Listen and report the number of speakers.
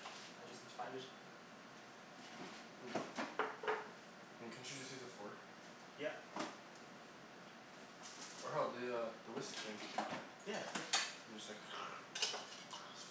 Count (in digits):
2